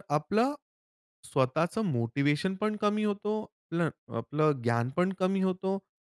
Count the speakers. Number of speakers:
one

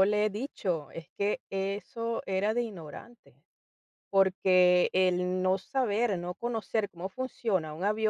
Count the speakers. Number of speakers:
one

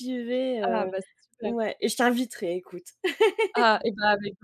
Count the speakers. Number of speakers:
two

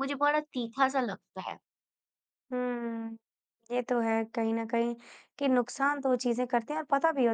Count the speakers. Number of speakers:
two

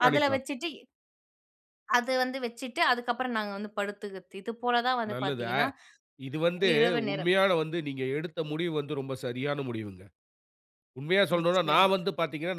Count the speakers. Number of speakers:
two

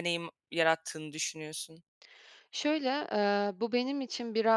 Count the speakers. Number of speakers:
two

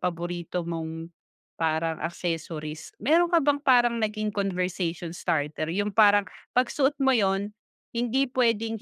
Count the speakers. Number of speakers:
one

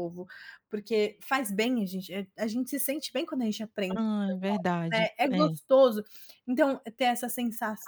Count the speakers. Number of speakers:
two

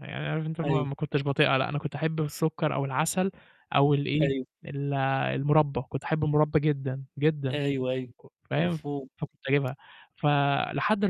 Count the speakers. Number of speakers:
two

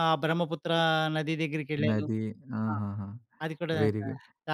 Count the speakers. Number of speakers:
two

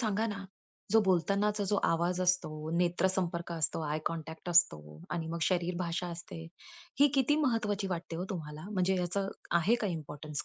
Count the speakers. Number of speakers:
one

